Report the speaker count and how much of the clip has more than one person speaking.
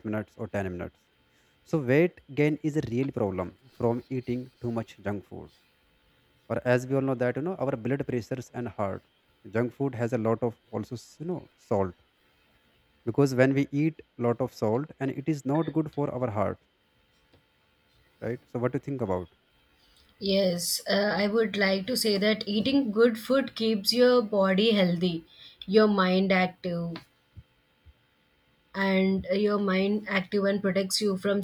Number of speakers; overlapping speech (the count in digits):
2, no overlap